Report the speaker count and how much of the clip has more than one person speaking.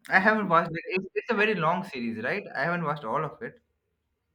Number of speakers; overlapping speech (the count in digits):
1, no overlap